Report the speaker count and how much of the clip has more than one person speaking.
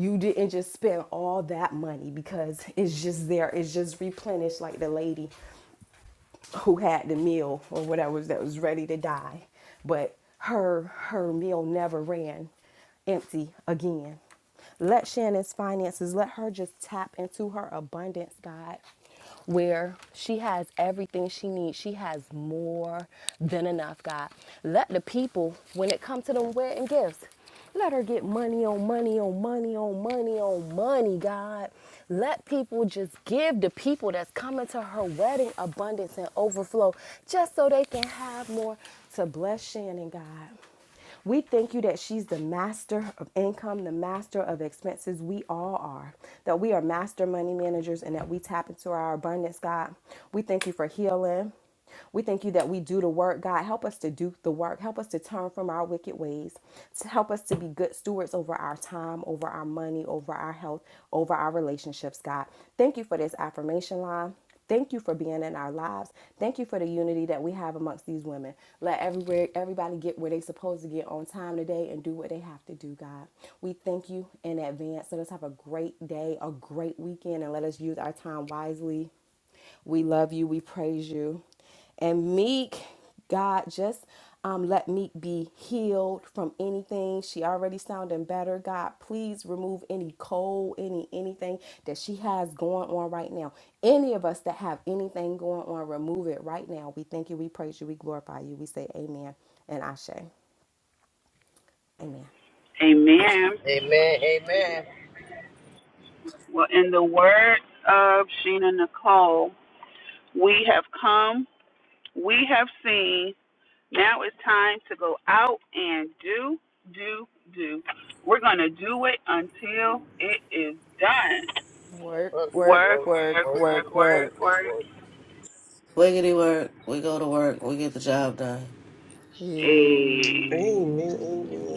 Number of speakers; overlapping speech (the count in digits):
5, about 2%